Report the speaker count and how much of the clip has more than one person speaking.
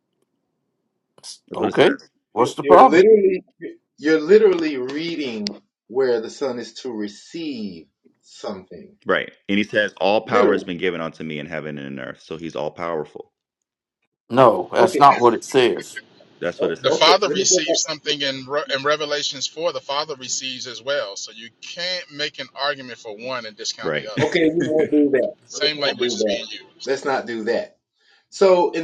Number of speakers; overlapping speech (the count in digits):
4, about 15%